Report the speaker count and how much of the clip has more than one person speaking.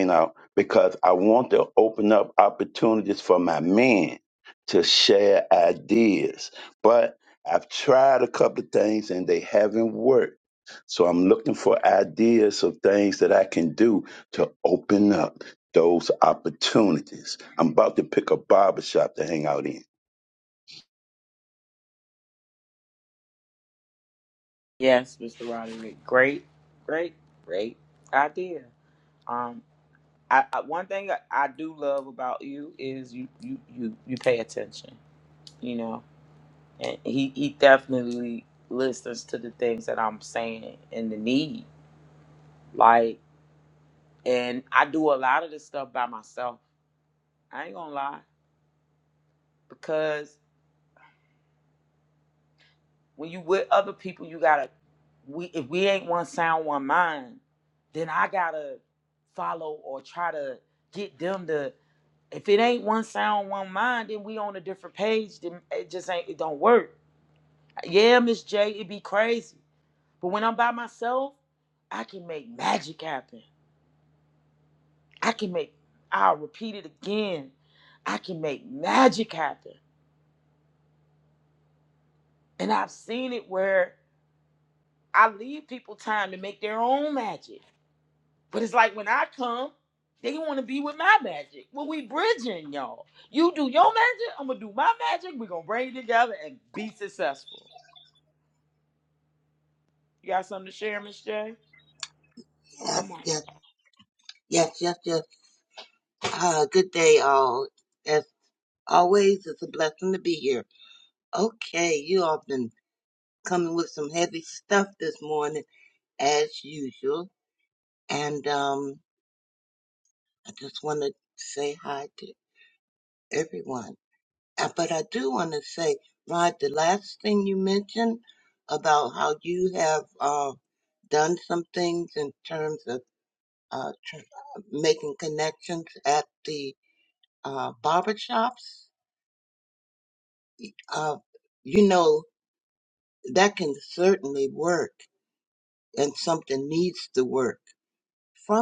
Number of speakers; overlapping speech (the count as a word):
three, under 1%